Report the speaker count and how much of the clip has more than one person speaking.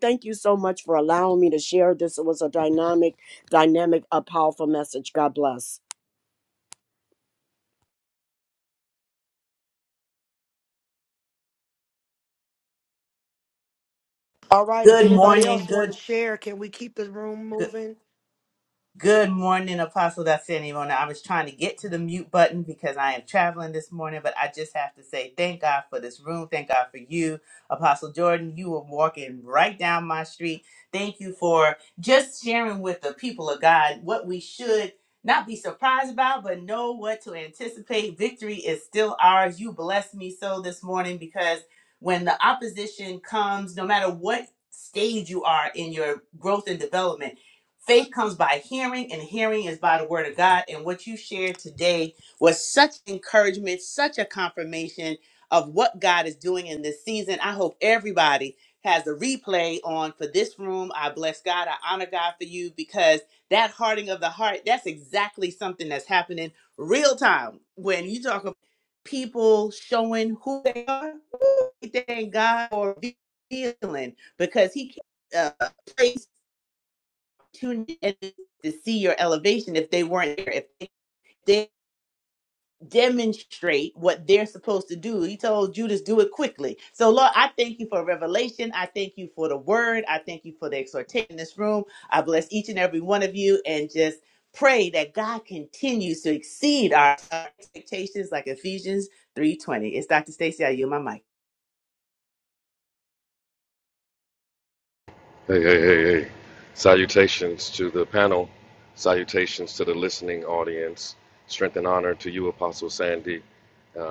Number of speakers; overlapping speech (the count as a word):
four, about 1%